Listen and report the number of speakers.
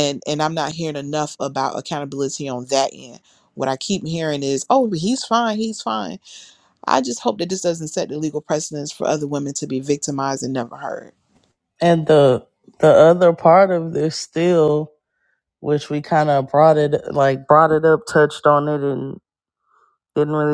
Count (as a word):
two